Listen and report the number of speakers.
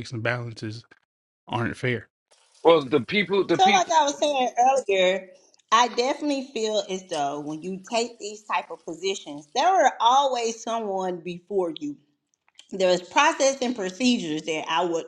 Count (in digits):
3